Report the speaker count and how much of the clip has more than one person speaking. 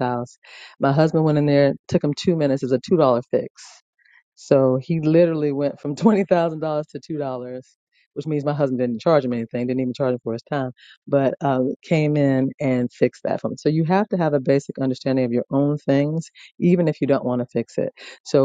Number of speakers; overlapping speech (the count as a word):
one, no overlap